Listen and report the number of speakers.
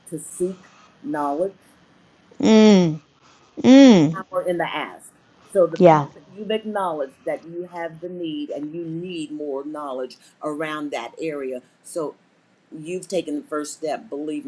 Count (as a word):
two